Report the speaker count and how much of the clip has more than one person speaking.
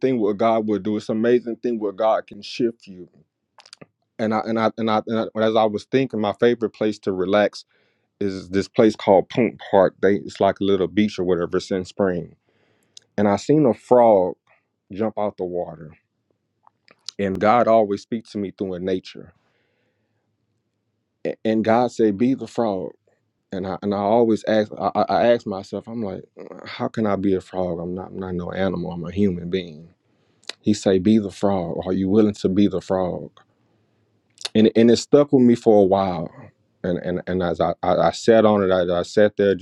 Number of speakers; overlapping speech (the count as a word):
one, no overlap